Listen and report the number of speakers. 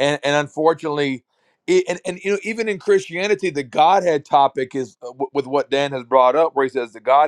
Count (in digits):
1